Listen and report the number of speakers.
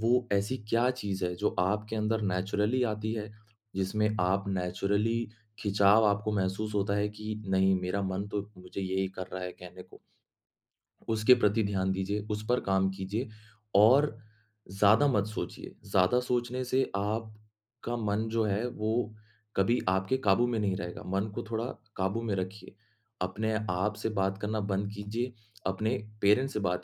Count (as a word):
one